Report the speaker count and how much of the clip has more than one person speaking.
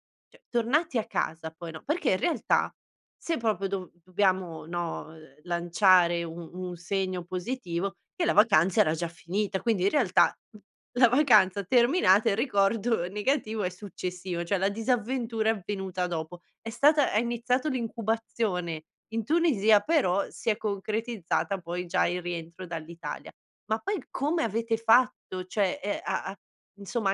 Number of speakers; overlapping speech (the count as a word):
one, no overlap